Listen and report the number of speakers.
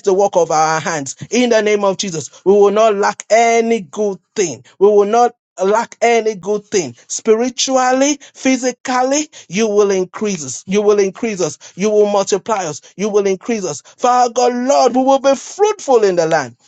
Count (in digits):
1